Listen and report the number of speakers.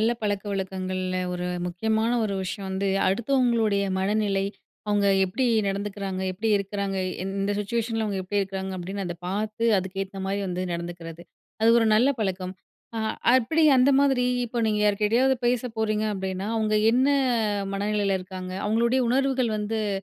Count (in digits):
1